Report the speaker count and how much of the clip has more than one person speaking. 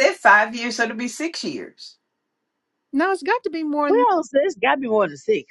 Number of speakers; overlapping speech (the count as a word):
three, about 3%